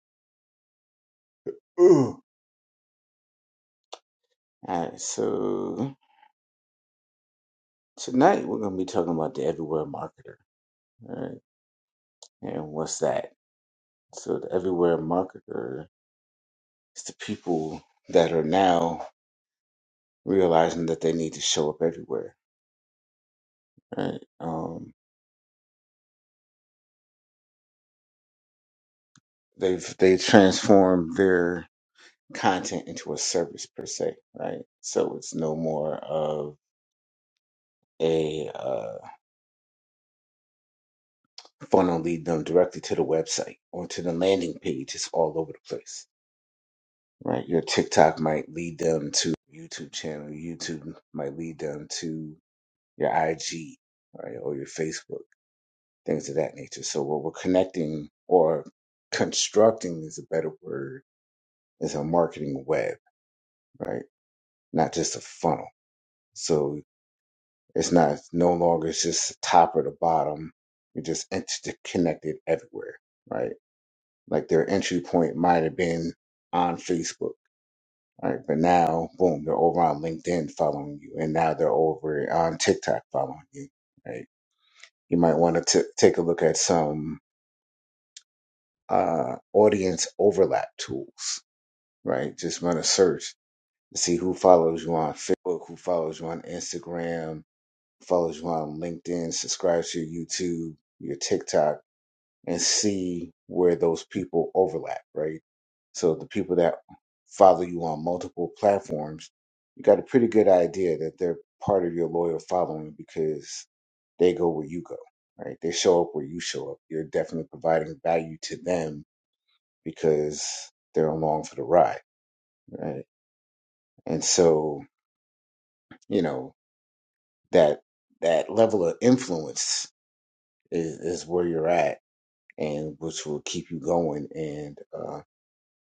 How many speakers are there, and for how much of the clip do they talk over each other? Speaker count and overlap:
one, no overlap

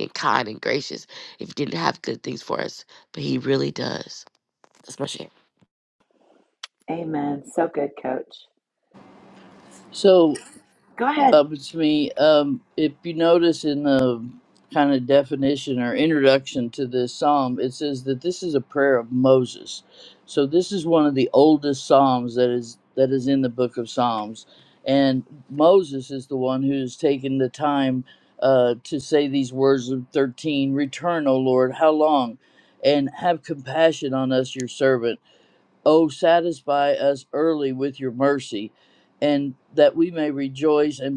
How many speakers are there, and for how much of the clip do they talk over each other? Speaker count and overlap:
three, under 1%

